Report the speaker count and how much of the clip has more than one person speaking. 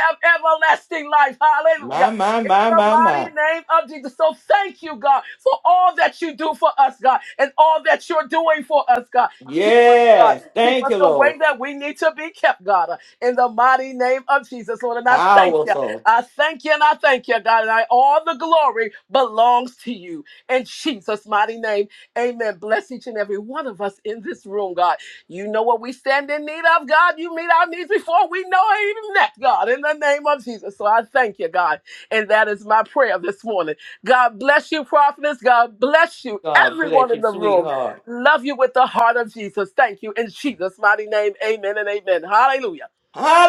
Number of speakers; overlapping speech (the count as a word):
two, about 12%